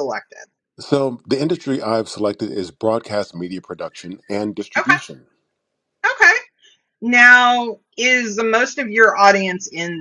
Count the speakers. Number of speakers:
2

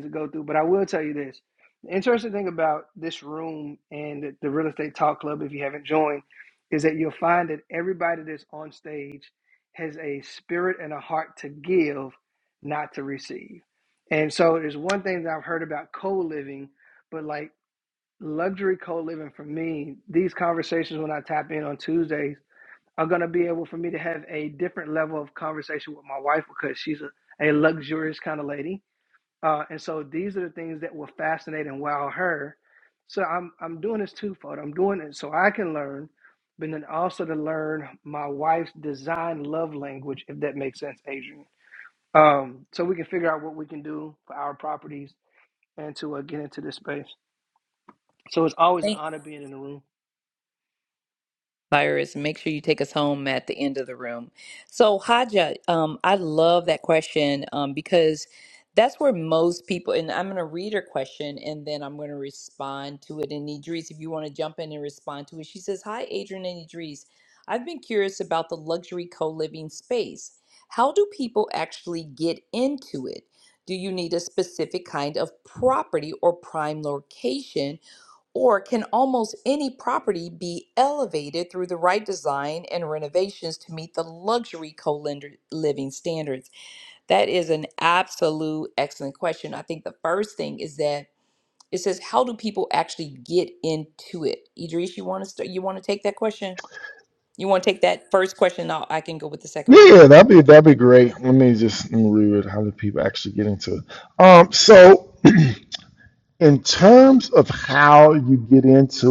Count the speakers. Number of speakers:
3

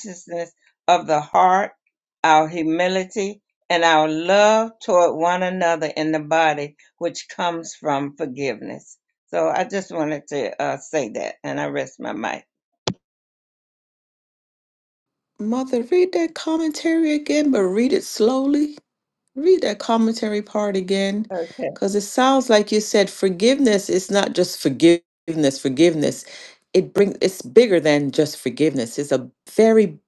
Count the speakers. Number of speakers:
2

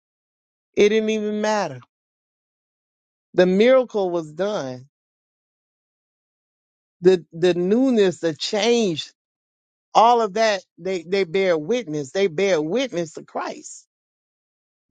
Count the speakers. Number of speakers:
1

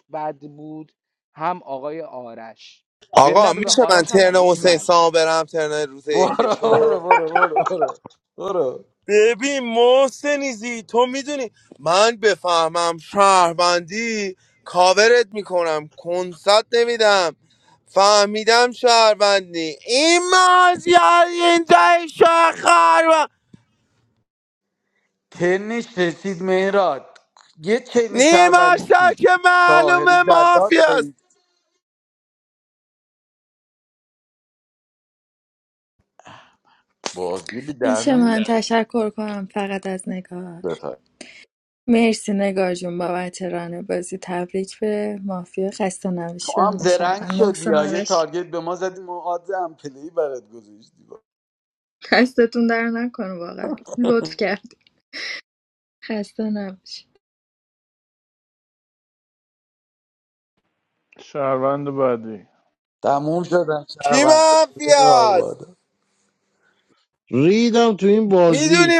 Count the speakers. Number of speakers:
6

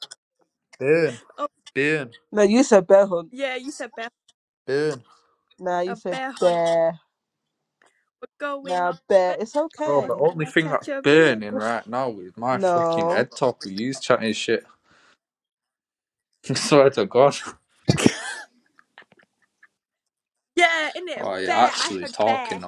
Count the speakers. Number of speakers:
3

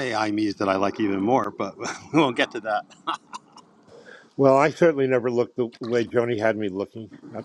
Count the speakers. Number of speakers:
2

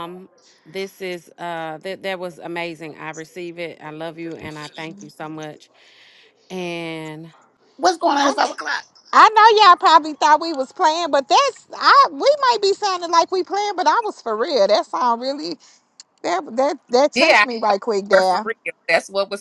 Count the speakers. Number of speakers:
4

